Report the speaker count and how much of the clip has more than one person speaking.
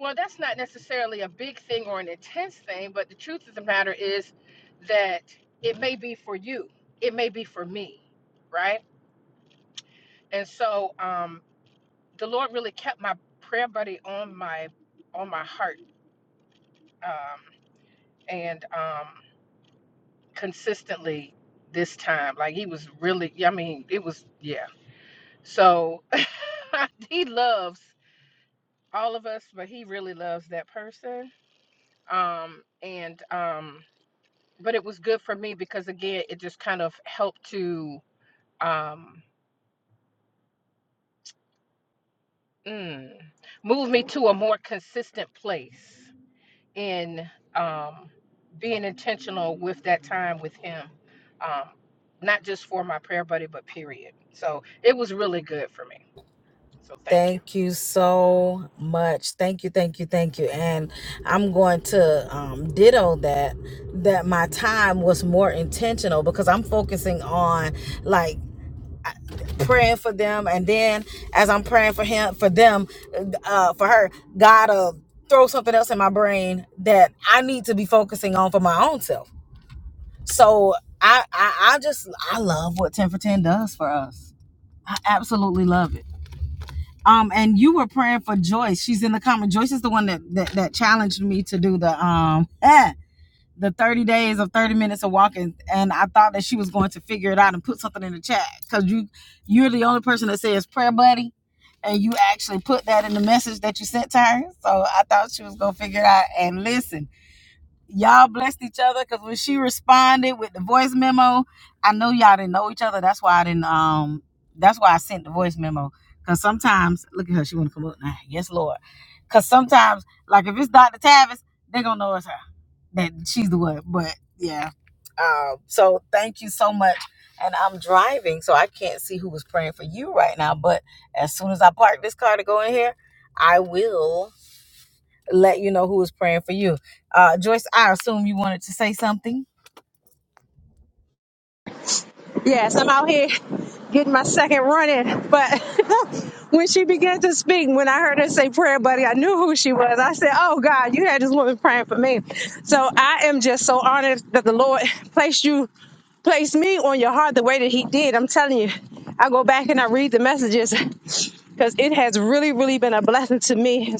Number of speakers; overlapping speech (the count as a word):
three, under 1%